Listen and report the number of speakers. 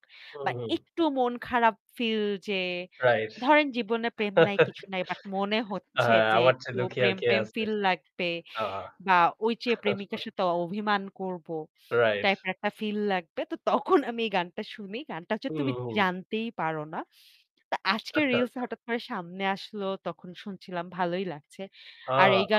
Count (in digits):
2